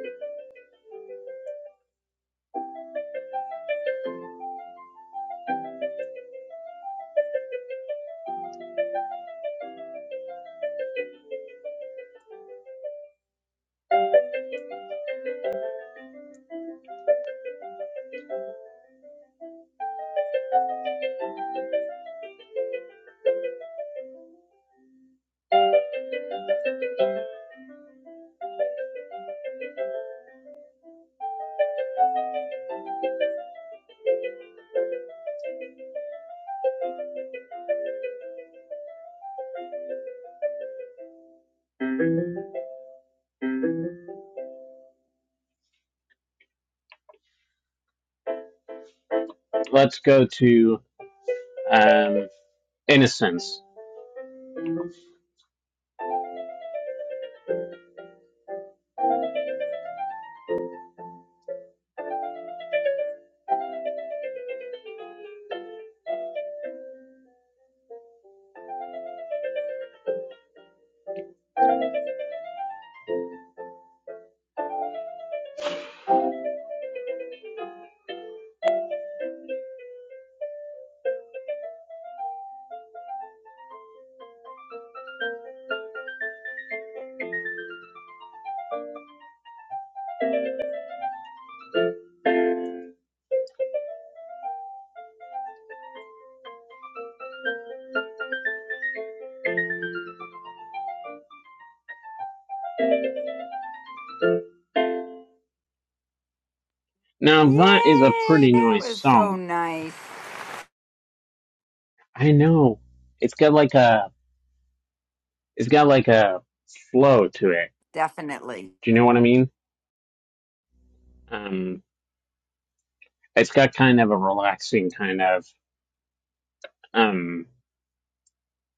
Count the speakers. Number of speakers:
2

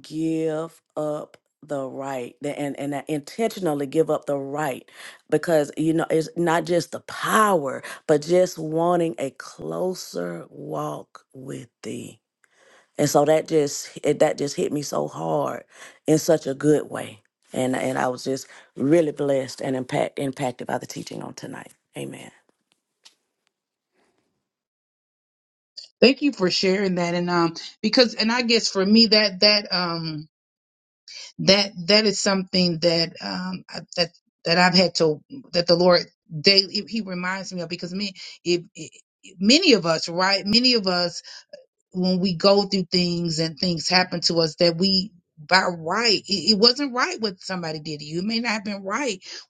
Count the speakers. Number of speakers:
2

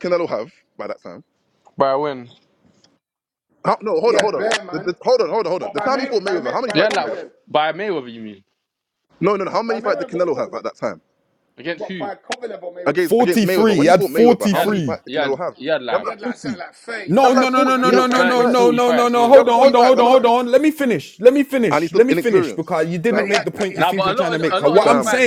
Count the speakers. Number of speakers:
4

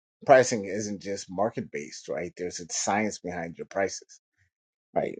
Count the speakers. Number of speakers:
1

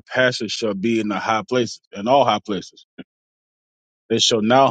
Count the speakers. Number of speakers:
1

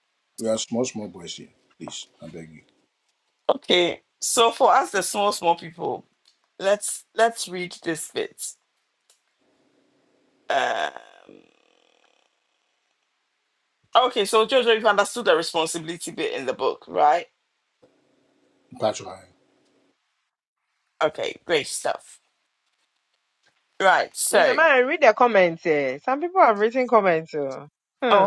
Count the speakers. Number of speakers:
3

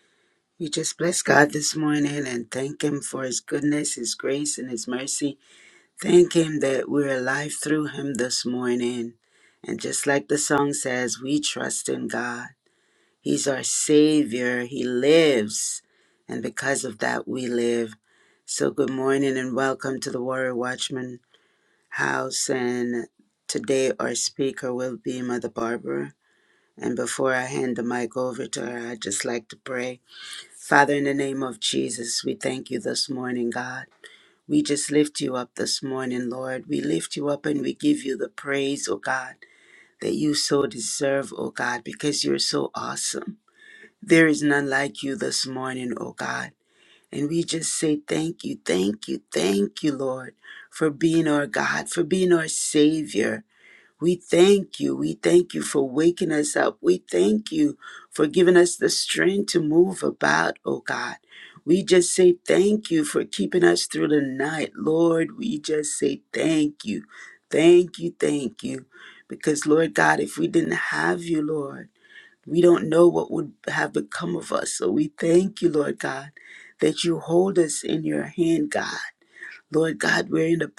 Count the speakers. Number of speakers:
1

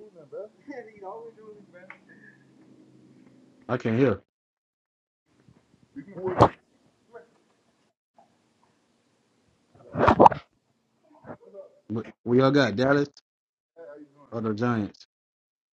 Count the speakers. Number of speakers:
2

